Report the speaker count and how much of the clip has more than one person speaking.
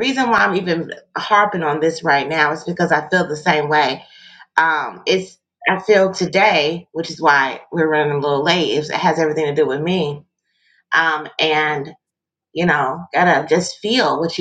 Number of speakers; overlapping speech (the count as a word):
one, no overlap